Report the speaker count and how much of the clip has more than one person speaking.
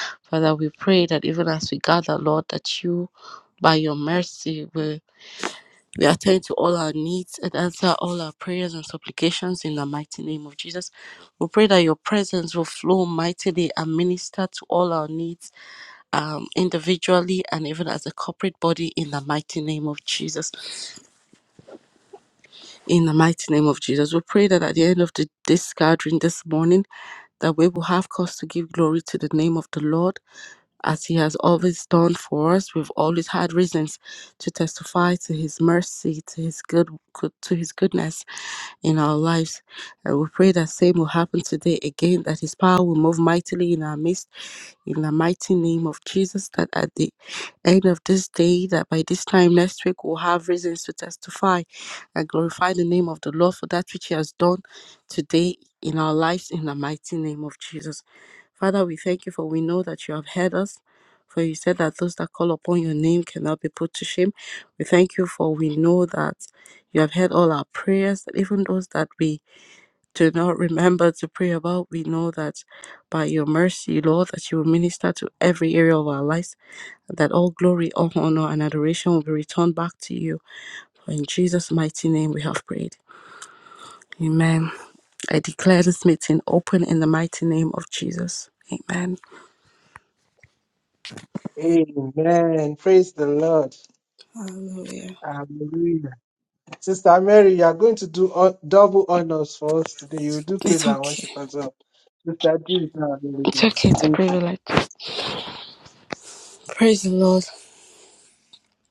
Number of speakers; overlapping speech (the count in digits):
2, about 1%